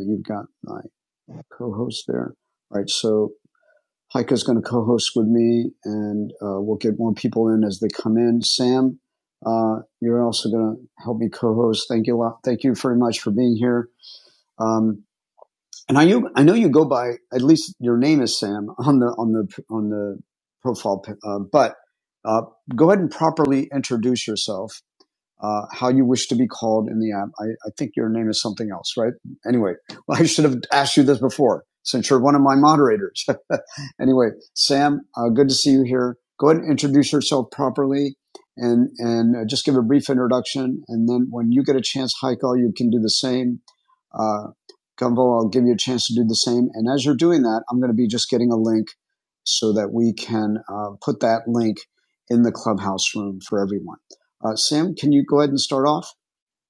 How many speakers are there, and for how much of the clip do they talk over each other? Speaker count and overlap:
one, no overlap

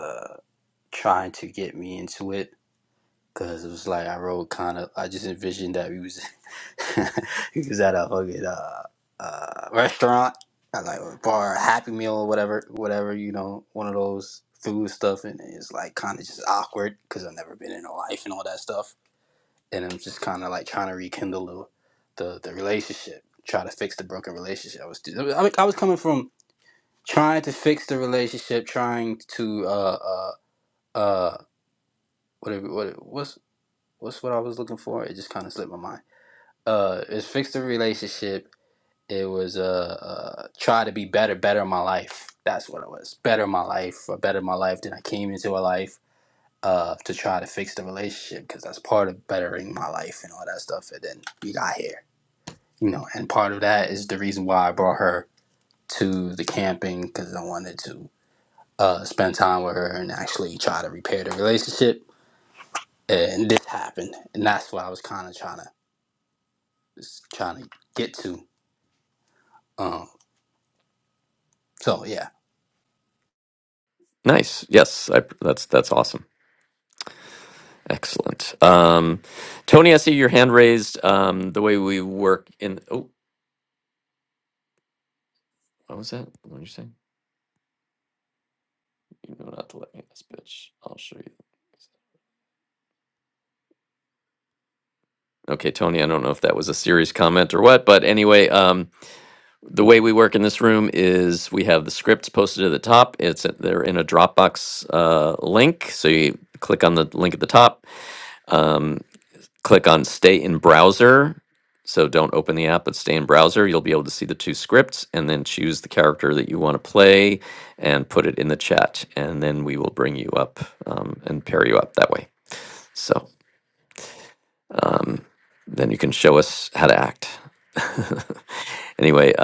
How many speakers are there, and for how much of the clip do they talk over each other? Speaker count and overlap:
two, no overlap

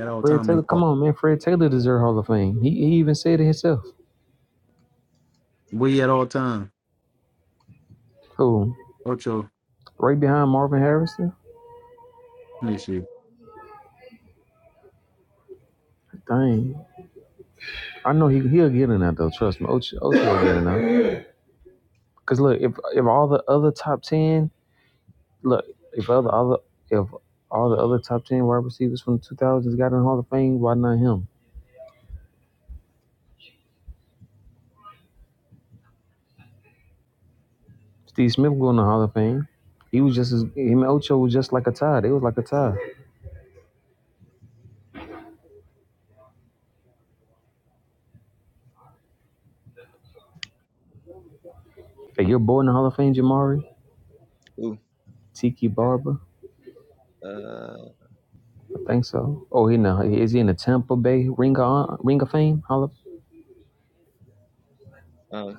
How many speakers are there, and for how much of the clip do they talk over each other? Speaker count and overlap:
three, about 1%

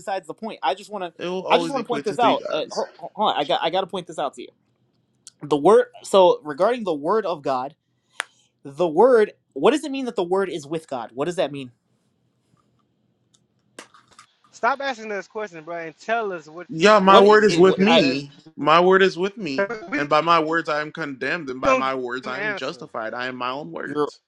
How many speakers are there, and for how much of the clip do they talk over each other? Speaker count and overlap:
three, about 17%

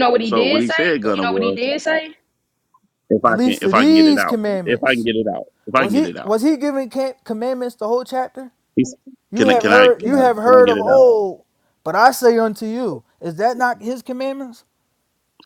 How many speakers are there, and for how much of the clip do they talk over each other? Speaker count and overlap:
three, about 31%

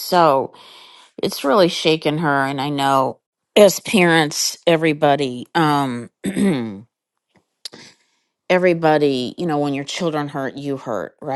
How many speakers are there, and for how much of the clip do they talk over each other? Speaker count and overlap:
one, no overlap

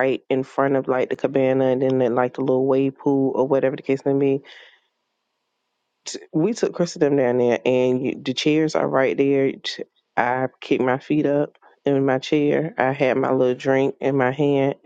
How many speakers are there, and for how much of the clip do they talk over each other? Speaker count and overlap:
one, no overlap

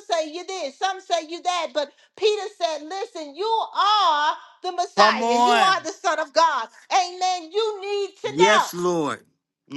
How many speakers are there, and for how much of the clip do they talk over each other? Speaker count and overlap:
two, about 12%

